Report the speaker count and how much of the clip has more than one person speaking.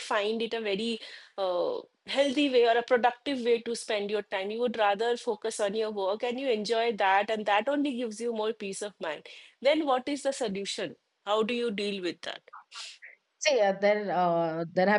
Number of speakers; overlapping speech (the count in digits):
2, no overlap